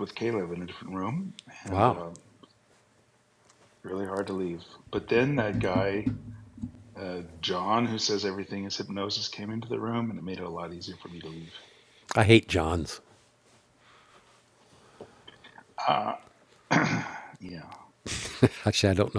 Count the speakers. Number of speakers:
2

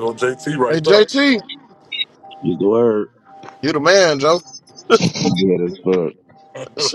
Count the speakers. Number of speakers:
3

